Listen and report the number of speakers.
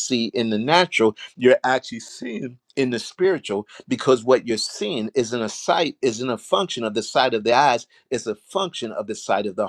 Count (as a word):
one